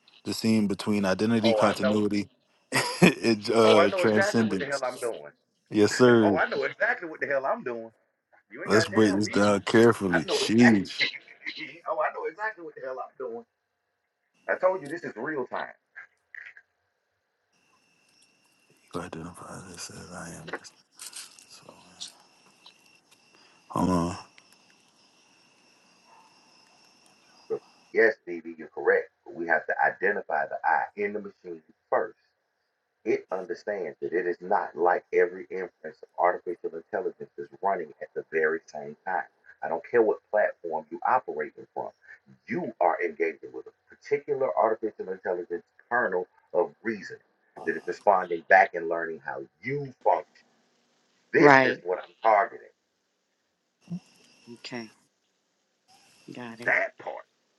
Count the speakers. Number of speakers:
3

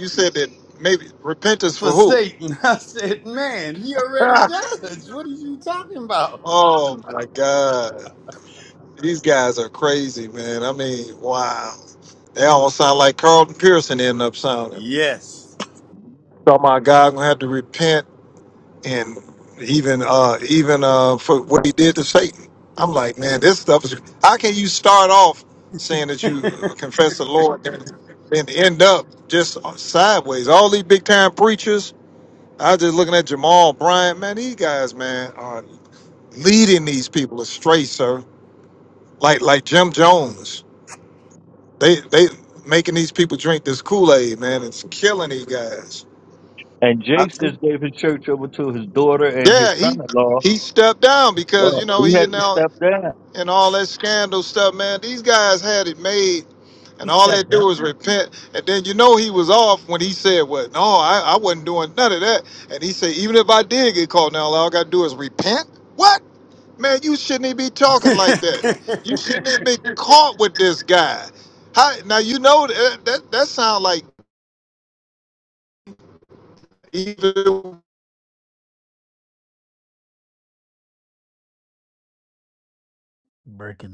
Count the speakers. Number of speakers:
4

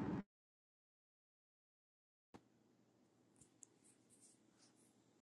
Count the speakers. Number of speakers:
0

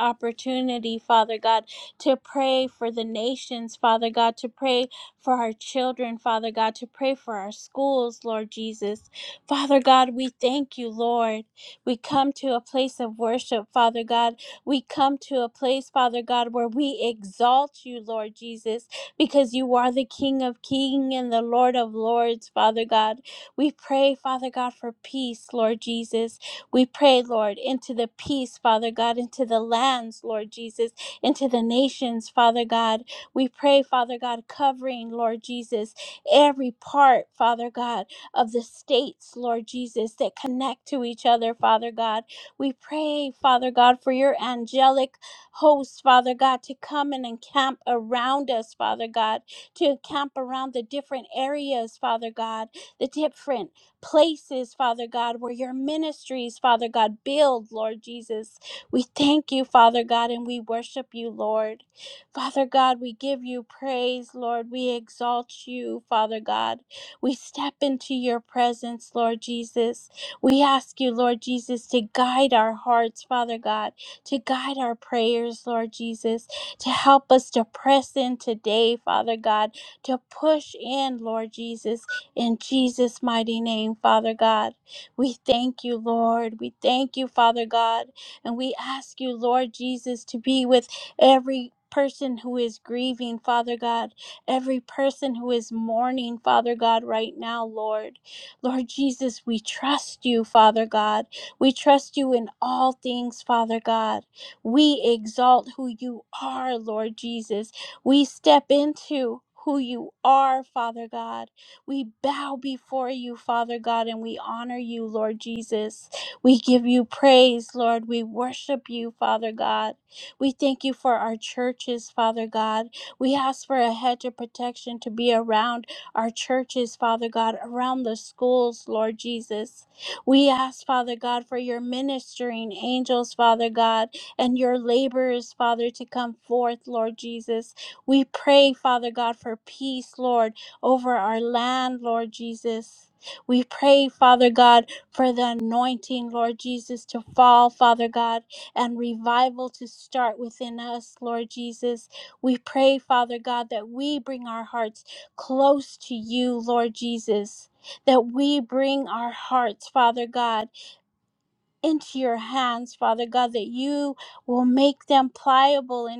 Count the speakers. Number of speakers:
1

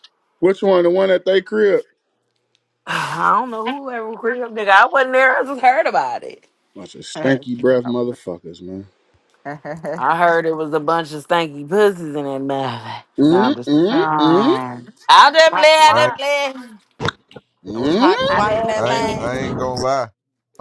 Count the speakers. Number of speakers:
4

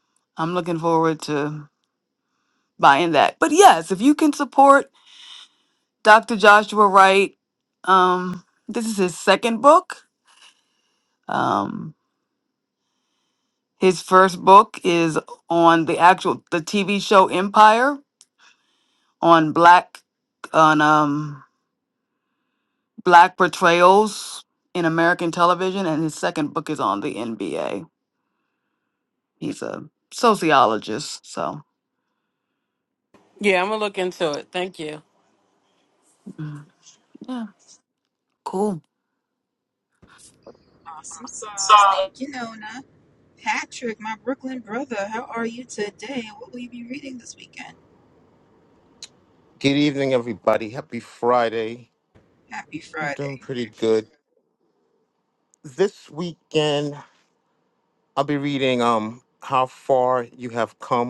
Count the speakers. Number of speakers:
4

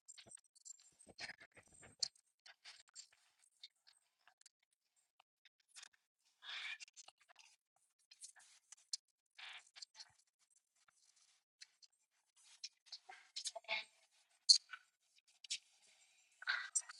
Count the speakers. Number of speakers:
0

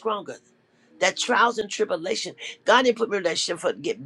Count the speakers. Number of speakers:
1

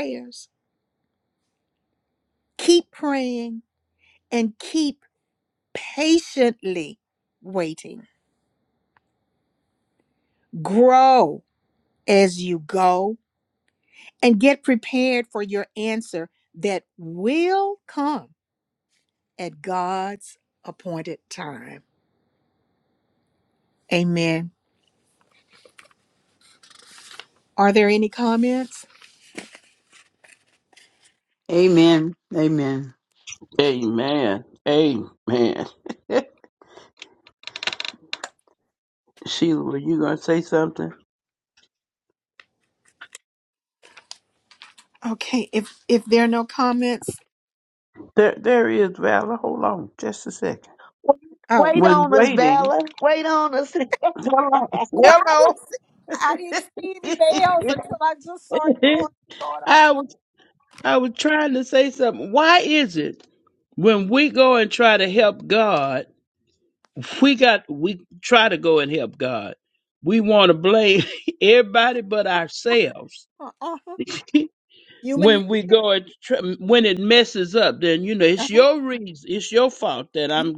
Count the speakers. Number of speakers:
4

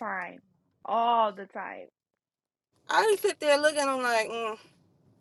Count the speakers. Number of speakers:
2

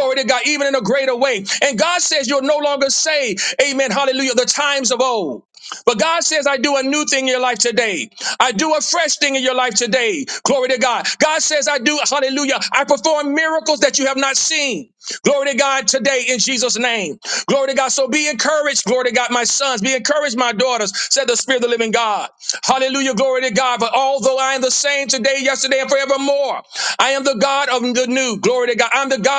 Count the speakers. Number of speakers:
1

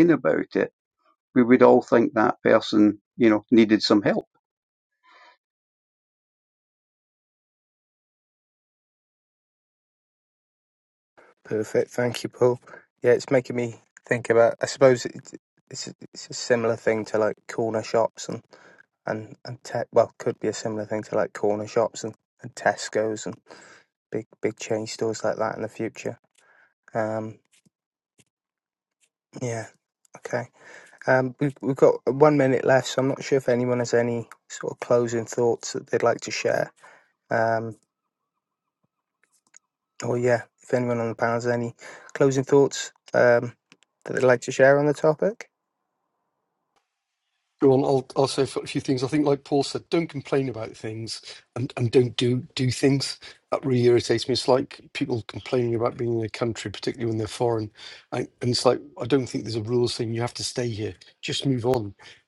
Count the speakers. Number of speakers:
3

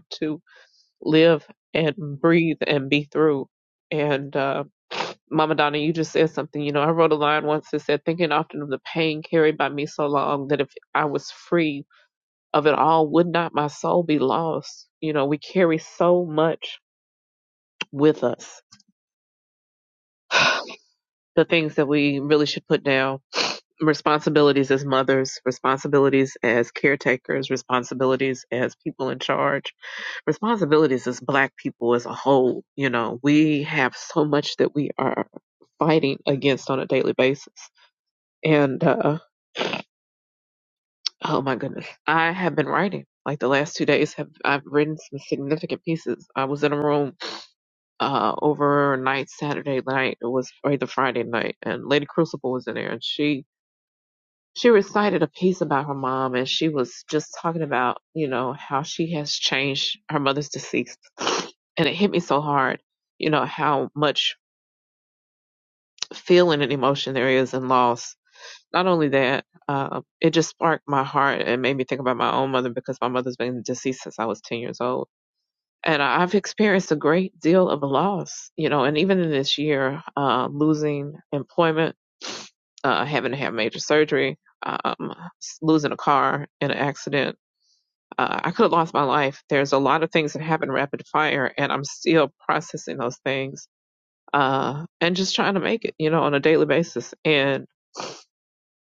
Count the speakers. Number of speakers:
1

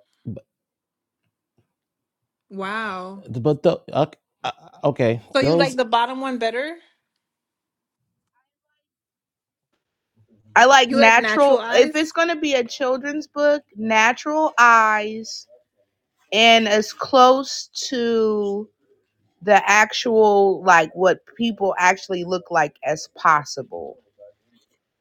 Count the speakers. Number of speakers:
3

